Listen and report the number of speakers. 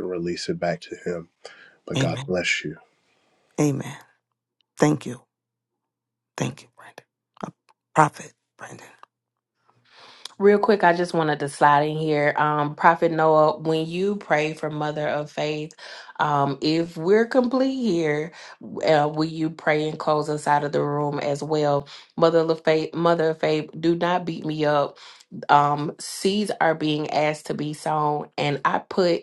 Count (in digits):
3